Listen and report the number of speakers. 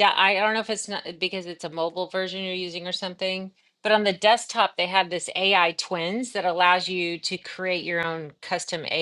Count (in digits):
1